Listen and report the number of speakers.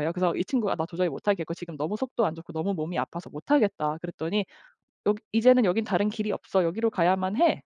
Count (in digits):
1